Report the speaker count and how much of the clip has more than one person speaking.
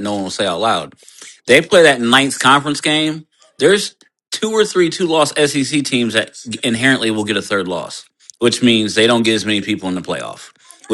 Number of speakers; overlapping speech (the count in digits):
1, no overlap